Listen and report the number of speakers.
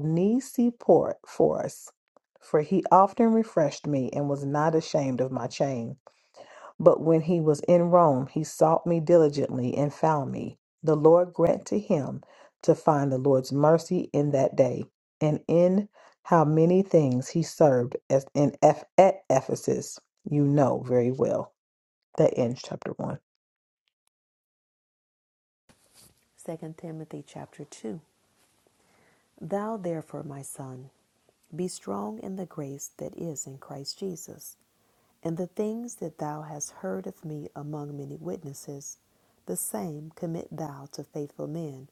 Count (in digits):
2